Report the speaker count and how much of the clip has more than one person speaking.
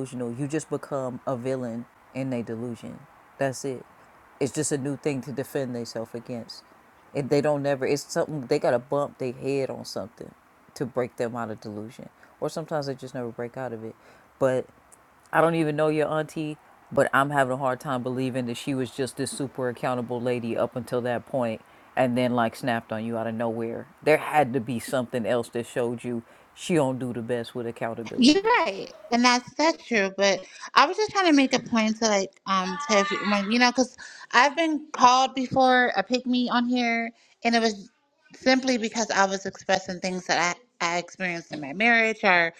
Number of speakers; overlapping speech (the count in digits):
2, about 1%